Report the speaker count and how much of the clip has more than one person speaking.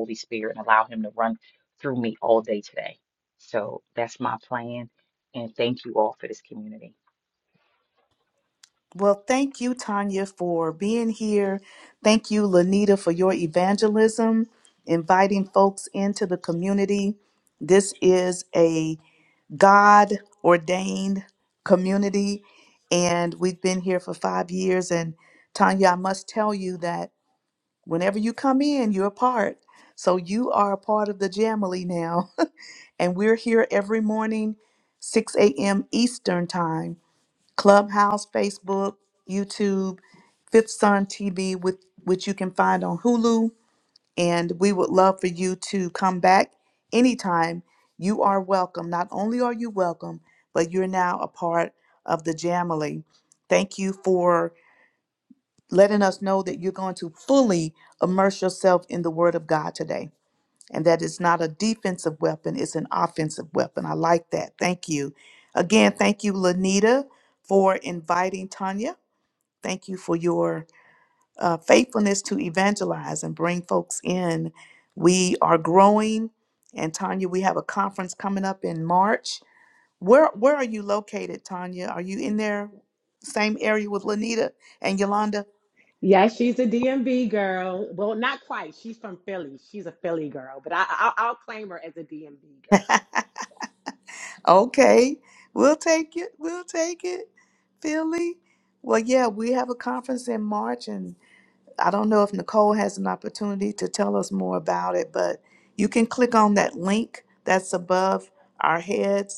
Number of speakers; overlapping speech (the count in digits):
3, no overlap